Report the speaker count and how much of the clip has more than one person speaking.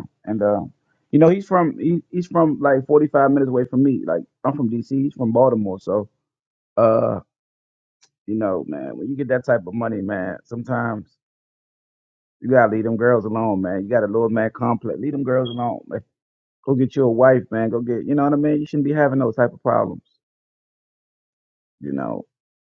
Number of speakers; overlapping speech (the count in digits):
1, no overlap